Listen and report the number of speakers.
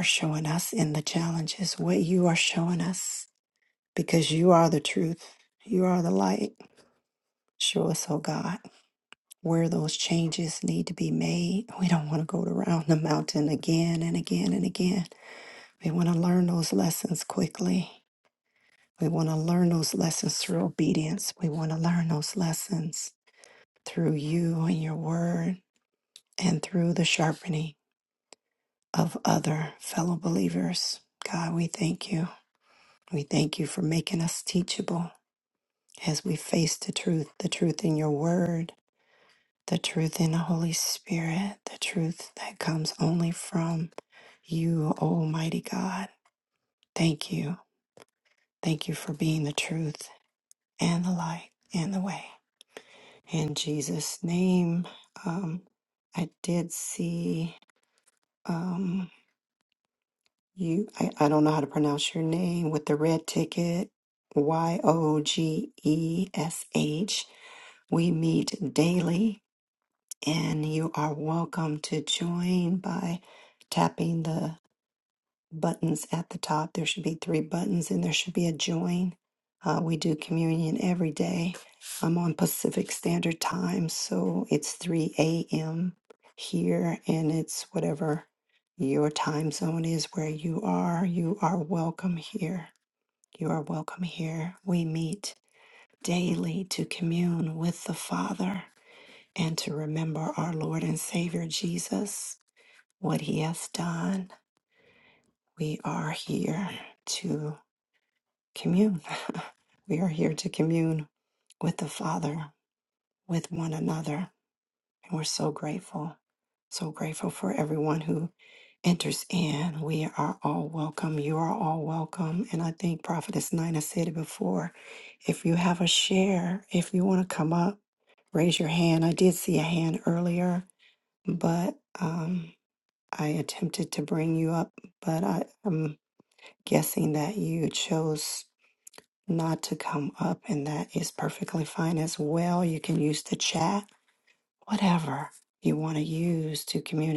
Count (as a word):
one